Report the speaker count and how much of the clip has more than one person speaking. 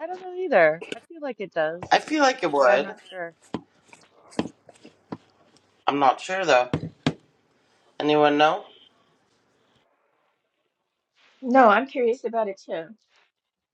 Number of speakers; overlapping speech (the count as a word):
three, about 3%